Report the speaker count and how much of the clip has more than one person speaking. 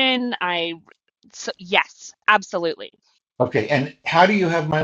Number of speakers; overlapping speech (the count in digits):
2, no overlap